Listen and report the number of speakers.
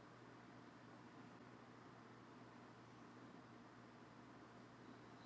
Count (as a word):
zero